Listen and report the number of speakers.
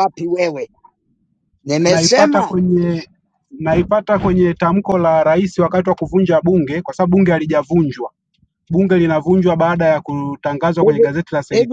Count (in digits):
2